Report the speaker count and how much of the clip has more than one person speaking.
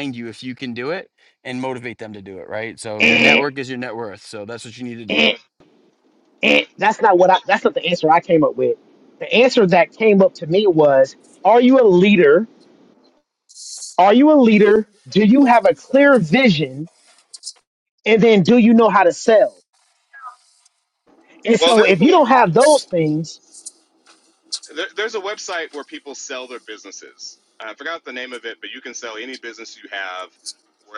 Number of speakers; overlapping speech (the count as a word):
three, about 4%